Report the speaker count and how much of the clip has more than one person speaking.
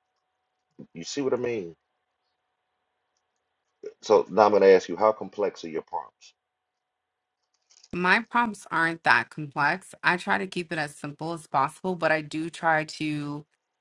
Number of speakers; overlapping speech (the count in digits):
2, no overlap